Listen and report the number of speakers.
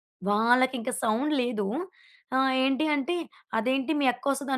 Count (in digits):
1